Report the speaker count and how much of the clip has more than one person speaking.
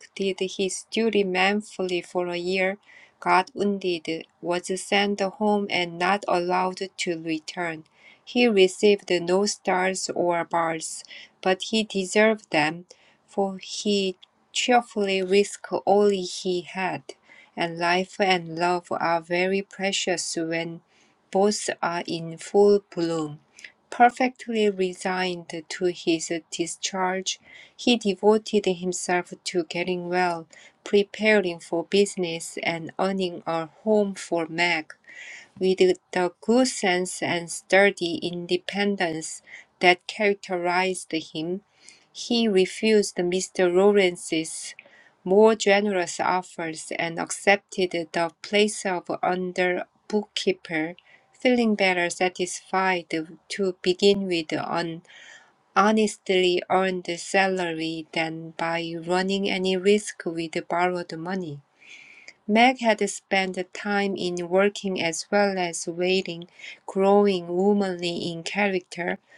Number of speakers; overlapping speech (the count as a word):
one, no overlap